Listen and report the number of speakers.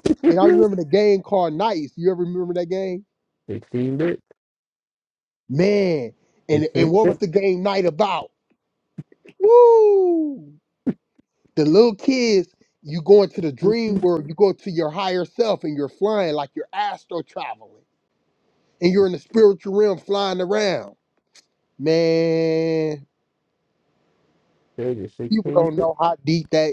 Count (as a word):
two